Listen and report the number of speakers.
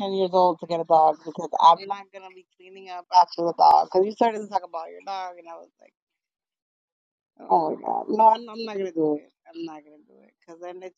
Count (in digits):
1